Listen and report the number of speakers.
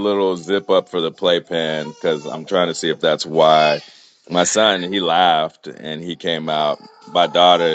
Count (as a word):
one